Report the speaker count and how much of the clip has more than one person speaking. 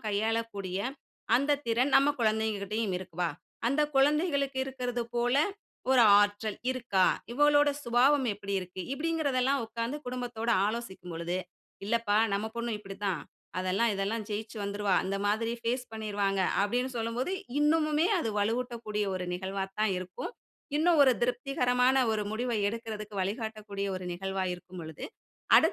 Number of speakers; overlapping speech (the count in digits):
1, no overlap